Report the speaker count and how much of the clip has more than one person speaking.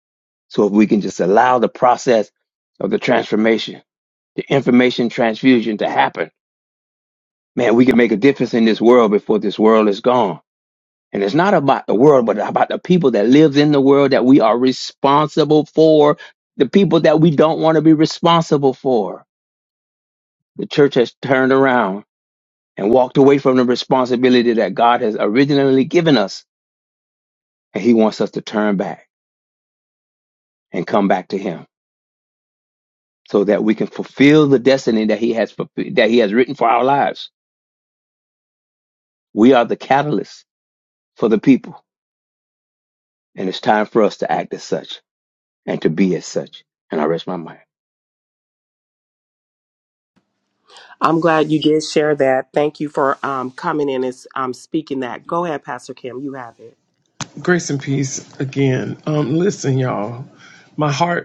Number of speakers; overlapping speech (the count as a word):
three, no overlap